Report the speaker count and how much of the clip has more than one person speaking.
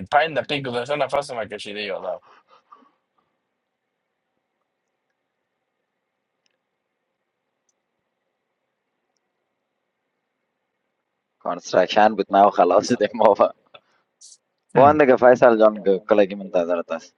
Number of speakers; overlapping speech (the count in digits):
2, about 1%